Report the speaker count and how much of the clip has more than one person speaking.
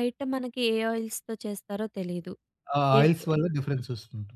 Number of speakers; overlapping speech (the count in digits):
2, about 10%